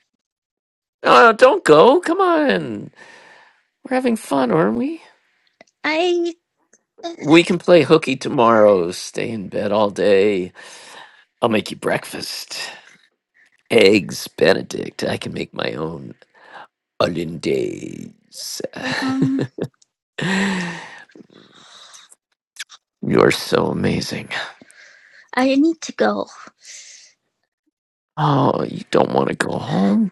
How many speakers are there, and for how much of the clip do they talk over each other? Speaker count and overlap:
two, no overlap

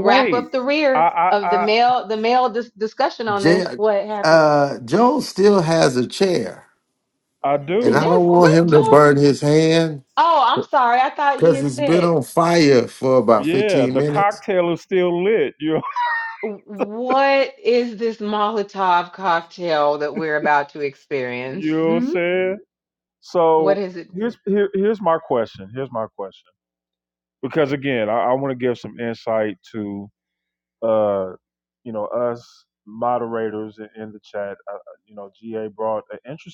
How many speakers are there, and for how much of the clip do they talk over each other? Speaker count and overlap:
three, about 15%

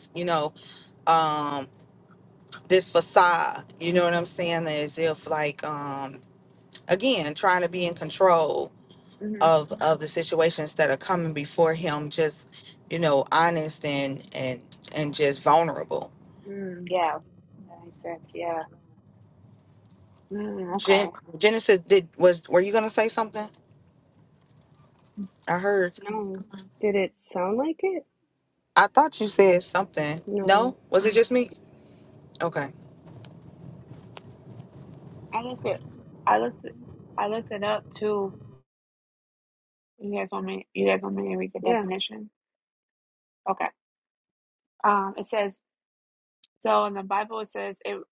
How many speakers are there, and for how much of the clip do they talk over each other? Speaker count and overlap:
three, about 3%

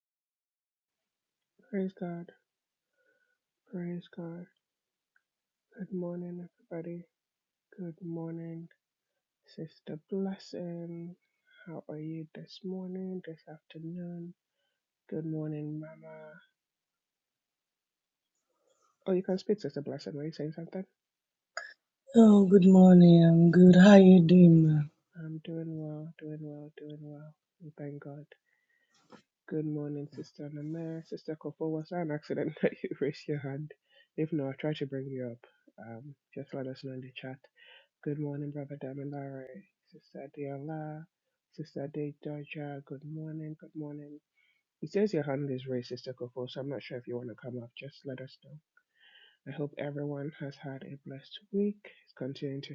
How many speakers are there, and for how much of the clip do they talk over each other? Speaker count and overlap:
two, no overlap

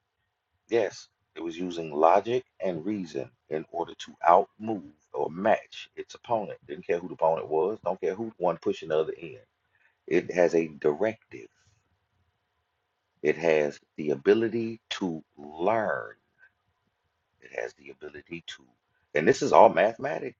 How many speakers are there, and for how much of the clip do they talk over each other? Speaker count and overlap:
one, no overlap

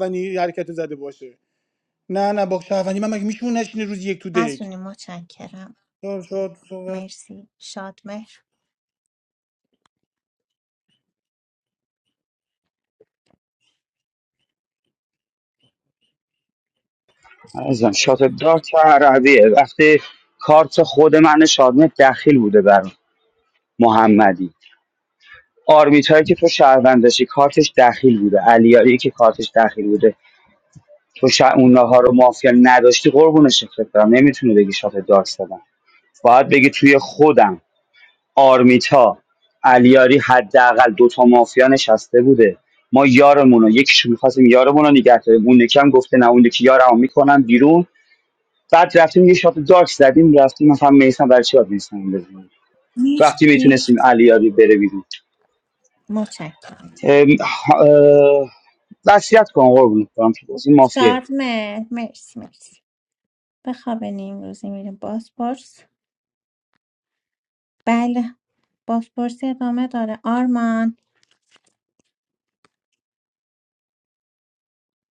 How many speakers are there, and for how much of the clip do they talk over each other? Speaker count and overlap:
three, about 2%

